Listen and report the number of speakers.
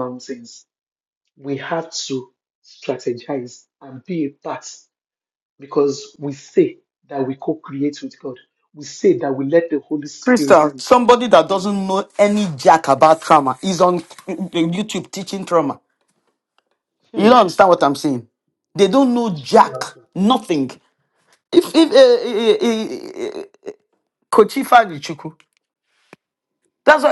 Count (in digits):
2